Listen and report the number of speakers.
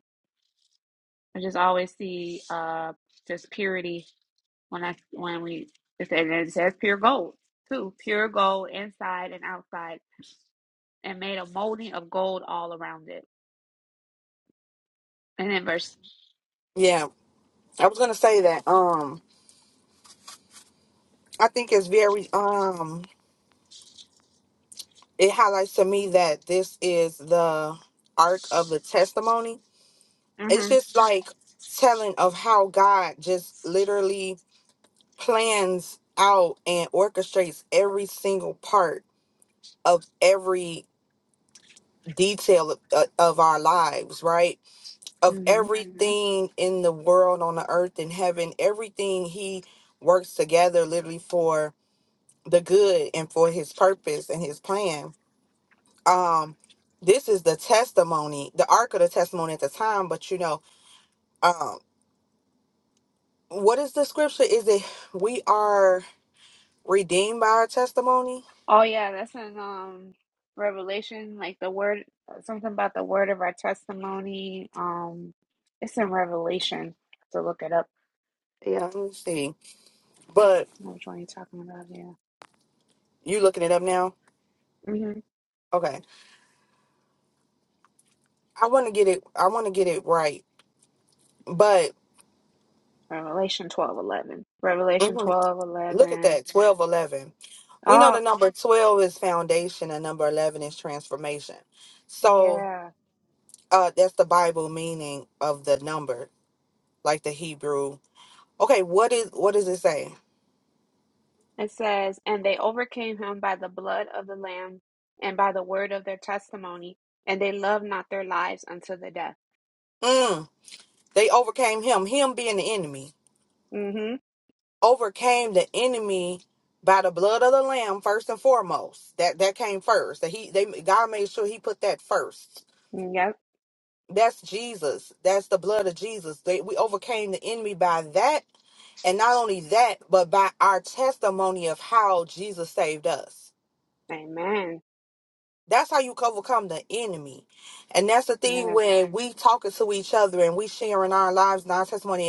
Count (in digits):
2